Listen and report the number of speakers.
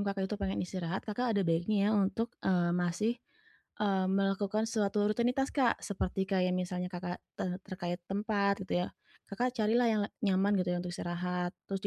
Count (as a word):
one